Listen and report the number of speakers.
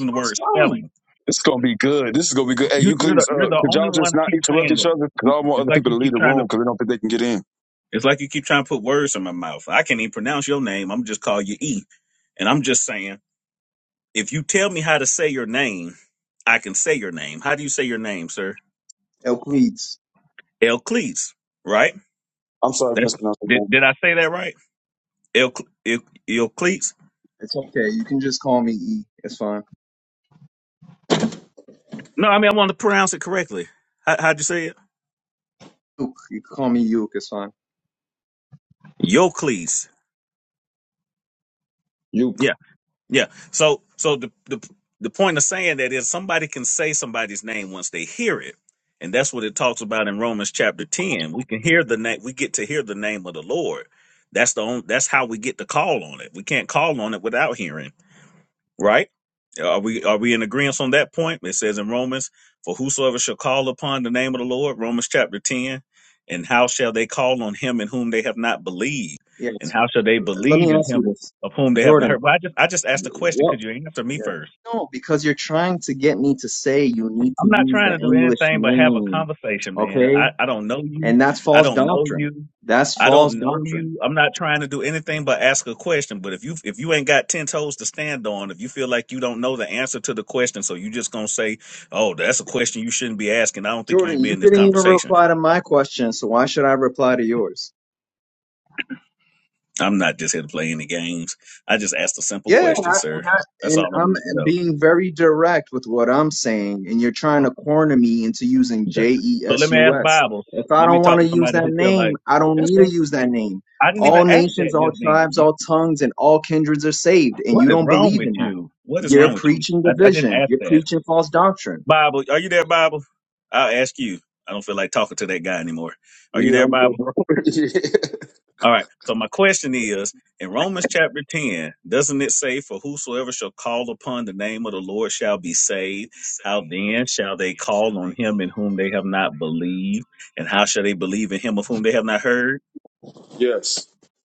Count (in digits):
3